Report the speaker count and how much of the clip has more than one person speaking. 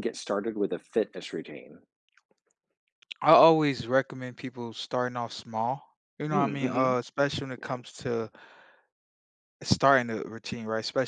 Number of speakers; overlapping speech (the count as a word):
two, about 6%